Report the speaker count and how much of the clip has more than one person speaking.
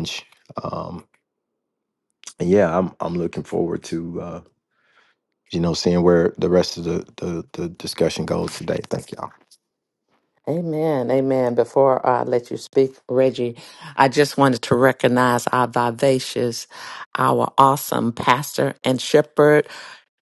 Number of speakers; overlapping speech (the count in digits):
2, no overlap